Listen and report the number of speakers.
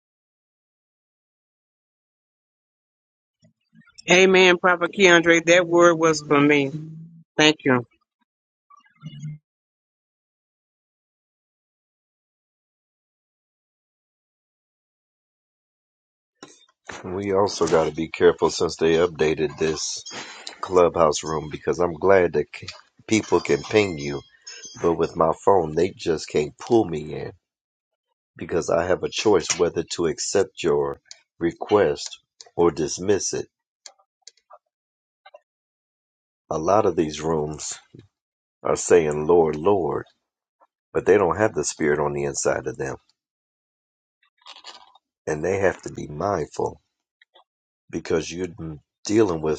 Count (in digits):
2